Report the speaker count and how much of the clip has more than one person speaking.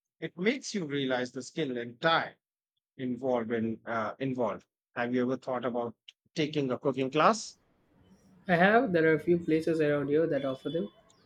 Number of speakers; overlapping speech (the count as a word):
two, no overlap